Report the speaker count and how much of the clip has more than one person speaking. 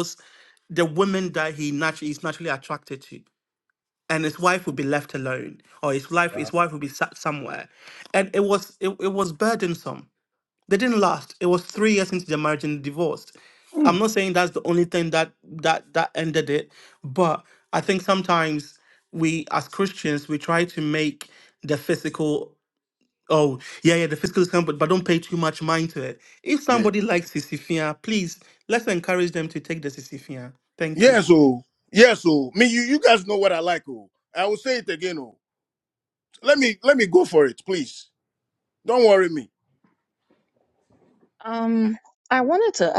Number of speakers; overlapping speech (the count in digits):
3, about 2%